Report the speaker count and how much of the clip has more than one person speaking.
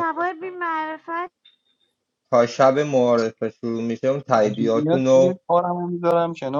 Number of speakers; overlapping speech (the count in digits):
3, about 17%